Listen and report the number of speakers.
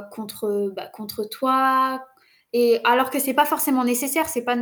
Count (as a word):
one